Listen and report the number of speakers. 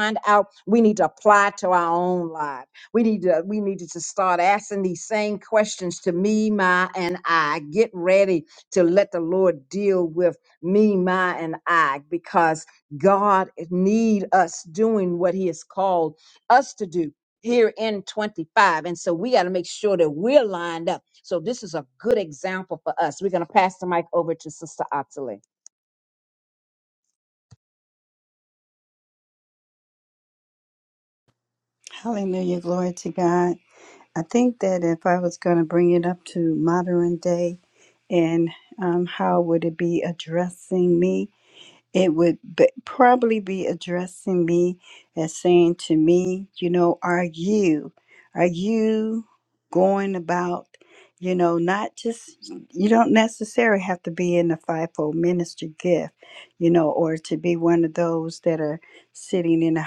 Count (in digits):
2